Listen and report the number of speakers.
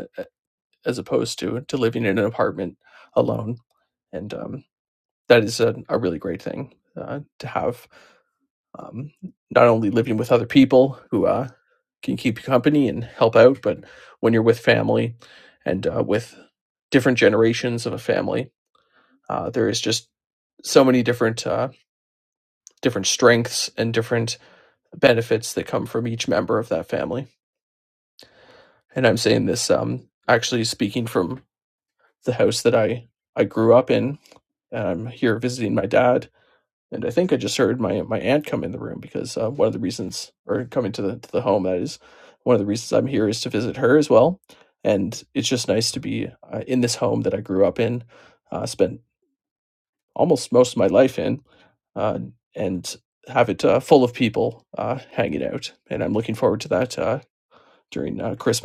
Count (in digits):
1